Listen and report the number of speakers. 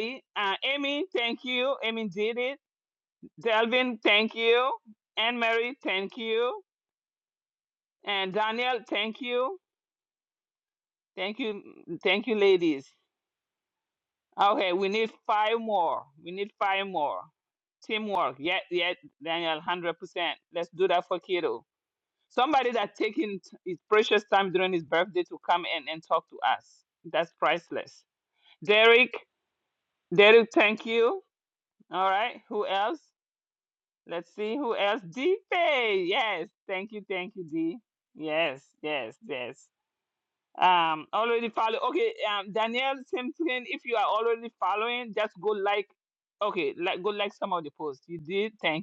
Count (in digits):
1